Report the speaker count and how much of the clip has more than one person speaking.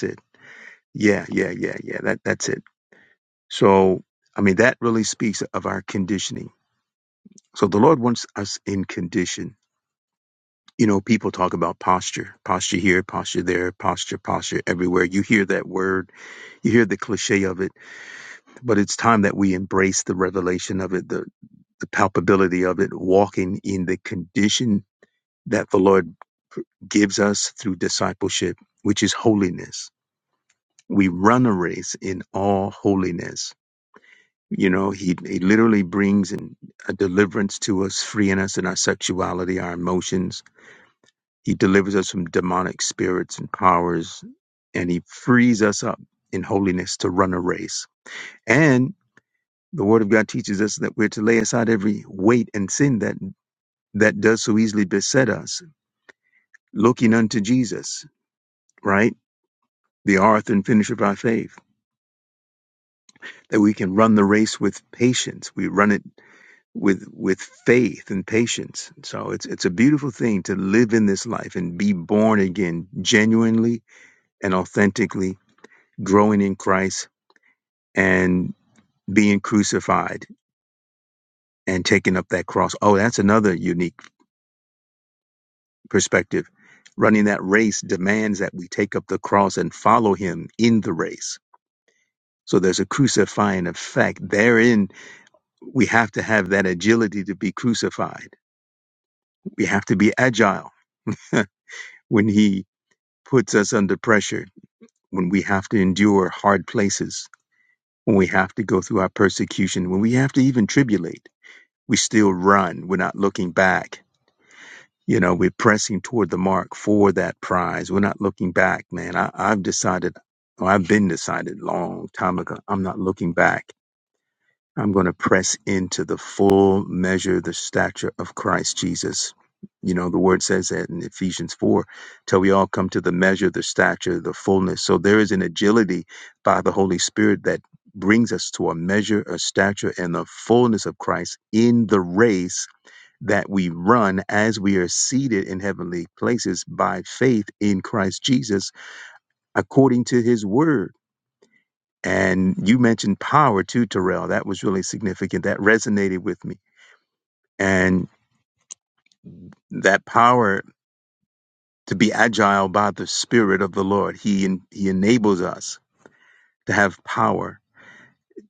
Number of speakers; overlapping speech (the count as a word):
one, no overlap